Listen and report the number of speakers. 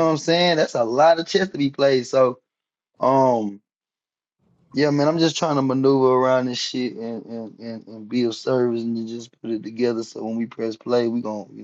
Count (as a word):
one